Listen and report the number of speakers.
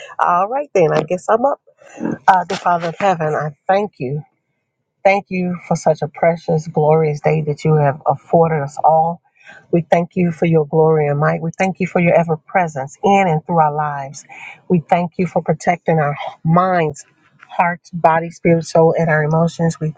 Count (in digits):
1